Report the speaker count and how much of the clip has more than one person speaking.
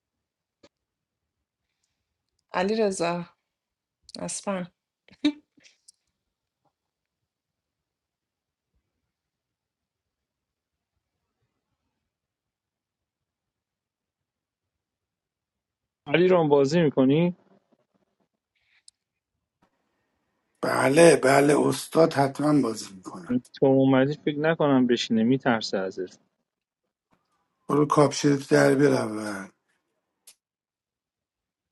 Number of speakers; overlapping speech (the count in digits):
3, no overlap